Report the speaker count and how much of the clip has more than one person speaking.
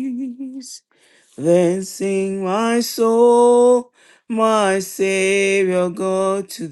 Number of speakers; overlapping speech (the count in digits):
1, no overlap